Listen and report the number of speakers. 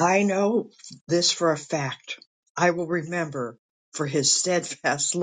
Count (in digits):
1